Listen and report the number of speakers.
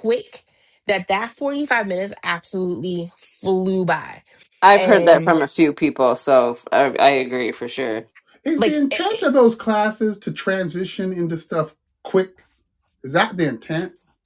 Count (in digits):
3